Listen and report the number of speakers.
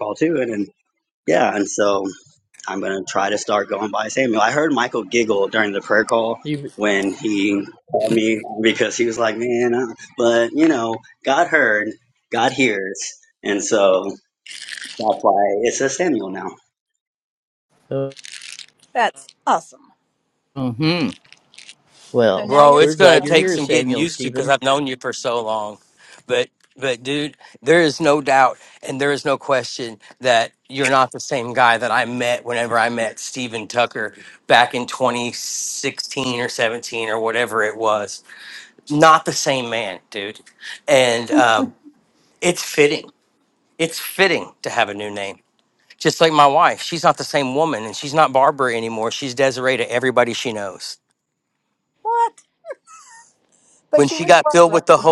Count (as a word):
four